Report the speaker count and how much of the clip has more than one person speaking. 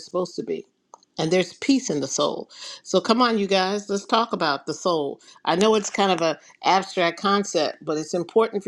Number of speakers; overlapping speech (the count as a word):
one, no overlap